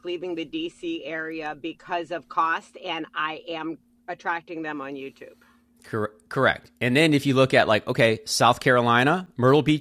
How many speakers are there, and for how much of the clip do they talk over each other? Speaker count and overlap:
2, no overlap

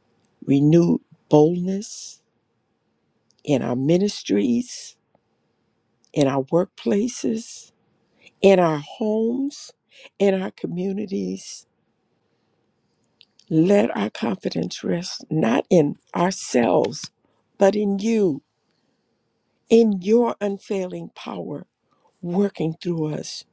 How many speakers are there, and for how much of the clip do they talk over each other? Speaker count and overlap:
1, no overlap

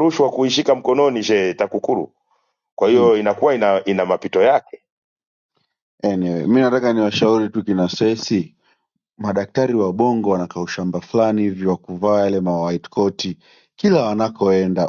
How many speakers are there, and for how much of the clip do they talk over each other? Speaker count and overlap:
2, about 1%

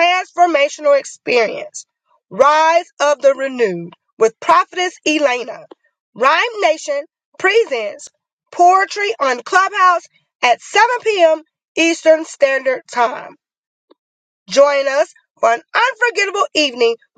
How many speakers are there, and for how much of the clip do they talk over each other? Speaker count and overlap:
1, no overlap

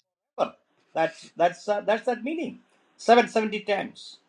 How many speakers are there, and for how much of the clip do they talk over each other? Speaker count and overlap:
1, no overlap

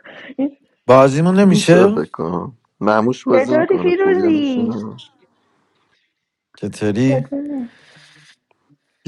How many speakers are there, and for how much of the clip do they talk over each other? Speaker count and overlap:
3, about 23%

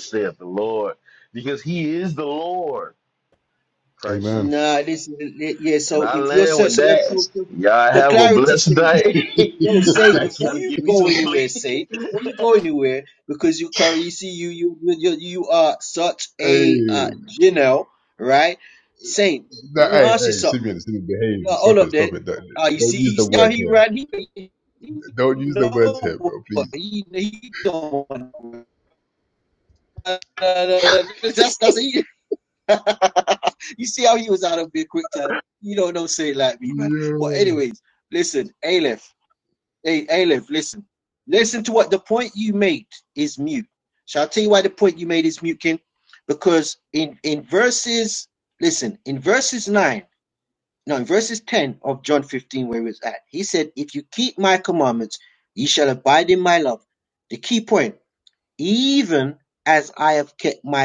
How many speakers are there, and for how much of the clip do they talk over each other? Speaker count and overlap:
3, about 17%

